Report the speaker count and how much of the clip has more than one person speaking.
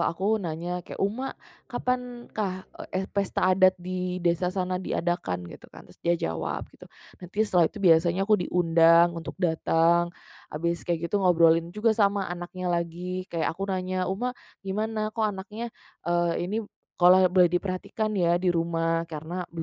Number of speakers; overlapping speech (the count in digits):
1, no overlap